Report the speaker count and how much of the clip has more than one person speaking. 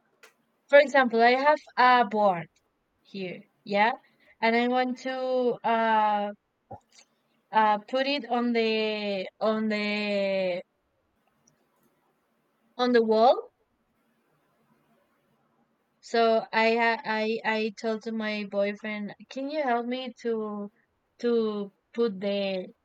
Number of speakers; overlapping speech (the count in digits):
1, no overlap